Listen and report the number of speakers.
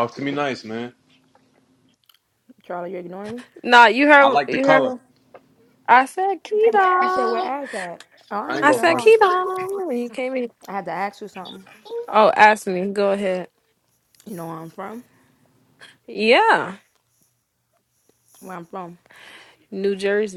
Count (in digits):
3